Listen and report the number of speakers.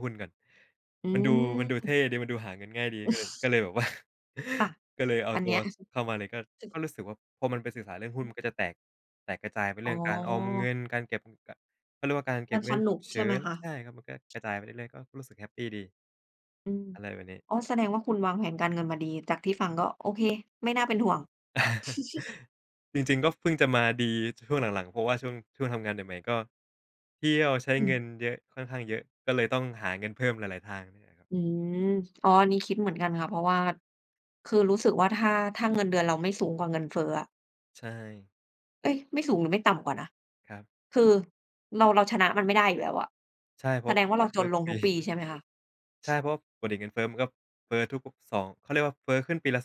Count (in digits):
2